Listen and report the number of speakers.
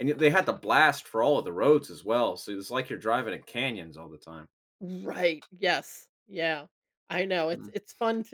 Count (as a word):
two